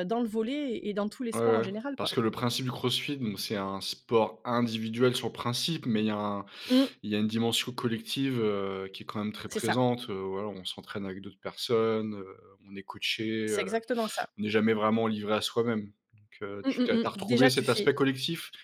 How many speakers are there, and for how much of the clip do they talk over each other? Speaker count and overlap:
2, about 14%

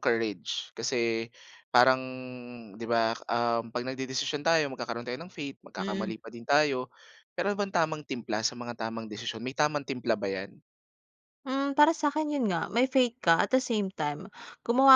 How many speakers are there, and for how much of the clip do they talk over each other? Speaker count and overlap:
2, about 2%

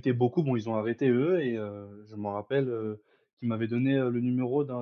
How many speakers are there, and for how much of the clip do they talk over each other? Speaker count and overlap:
1, no overlap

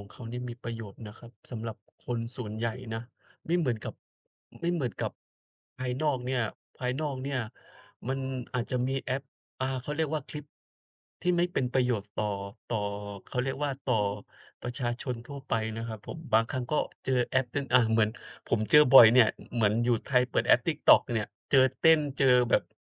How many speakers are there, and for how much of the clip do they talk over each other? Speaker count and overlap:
1, no overlap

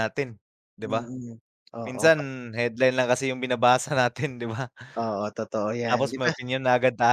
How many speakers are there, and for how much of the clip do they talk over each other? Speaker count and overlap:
2, about 16%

